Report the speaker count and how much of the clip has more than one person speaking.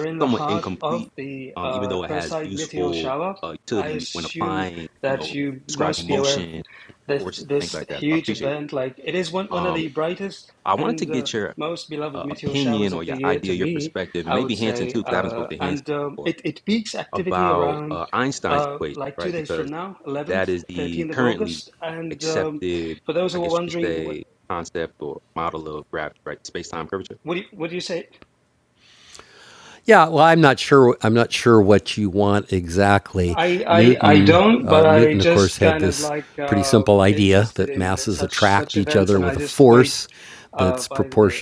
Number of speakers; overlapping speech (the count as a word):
three, about 54%